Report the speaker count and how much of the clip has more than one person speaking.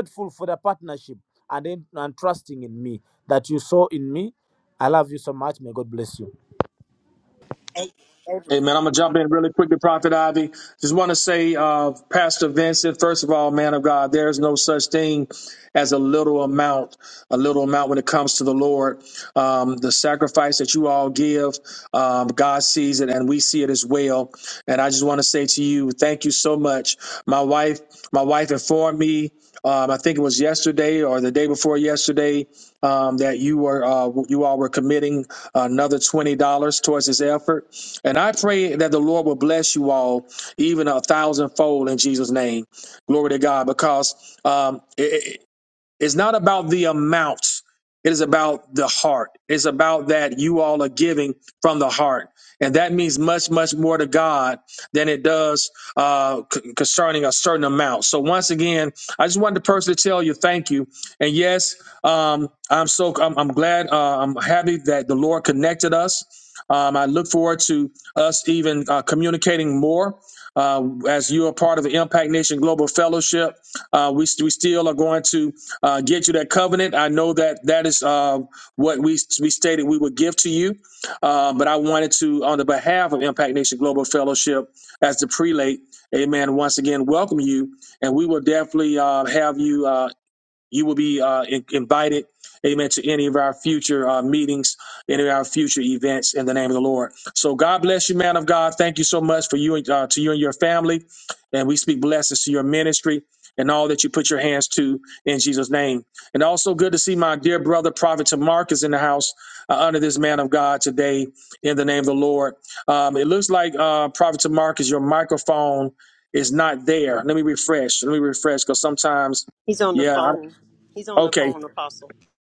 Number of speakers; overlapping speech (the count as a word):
three, about 1%